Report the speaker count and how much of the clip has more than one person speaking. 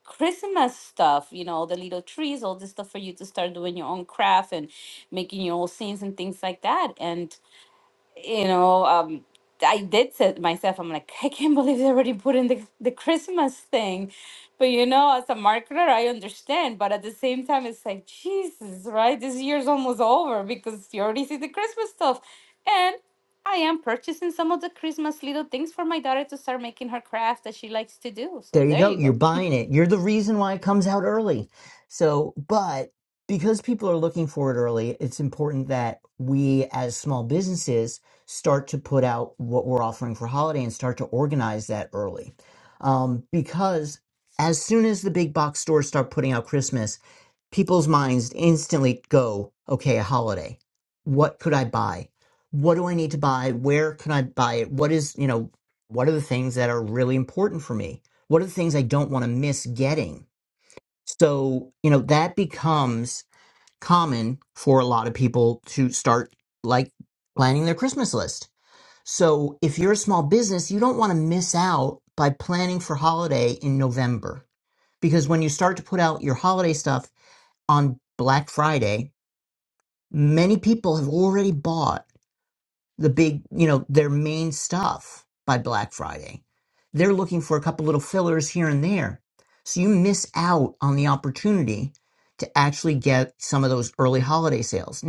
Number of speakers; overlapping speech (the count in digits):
2, about 1%